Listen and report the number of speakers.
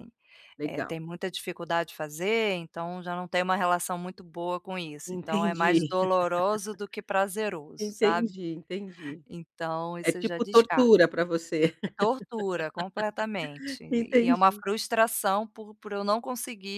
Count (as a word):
two